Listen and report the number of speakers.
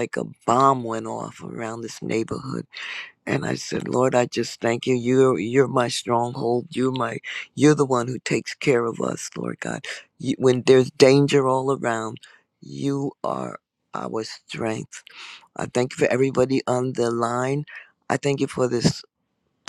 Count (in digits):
1